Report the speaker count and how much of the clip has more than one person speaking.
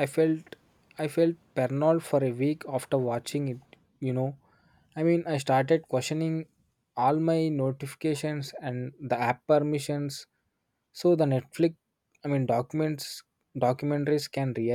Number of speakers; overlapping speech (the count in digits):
1, no overlap